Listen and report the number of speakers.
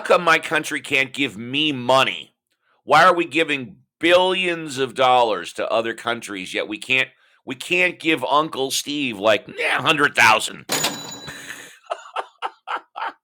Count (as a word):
one